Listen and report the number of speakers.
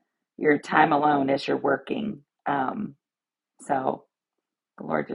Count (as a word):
one